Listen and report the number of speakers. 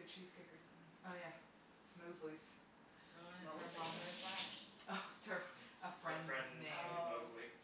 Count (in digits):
3